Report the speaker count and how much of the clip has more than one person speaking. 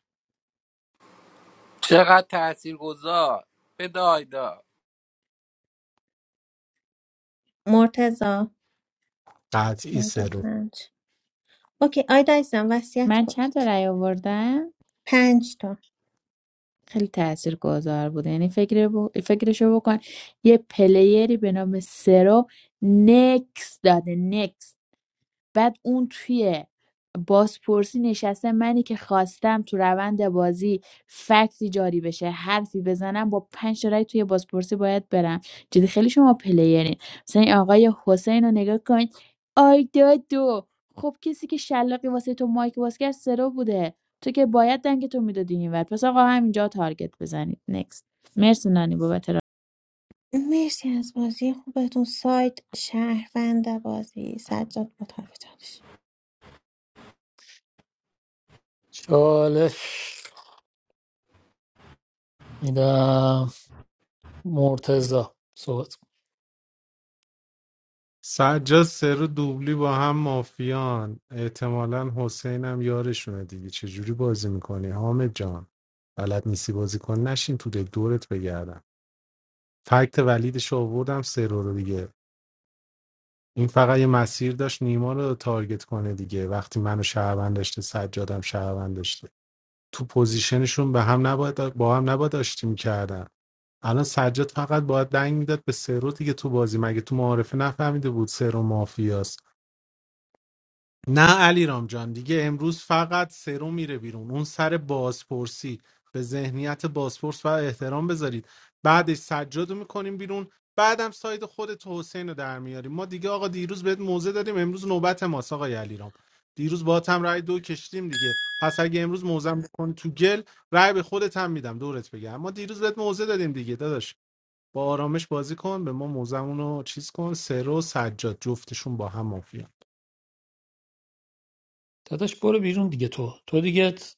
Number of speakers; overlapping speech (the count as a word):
five, about 1%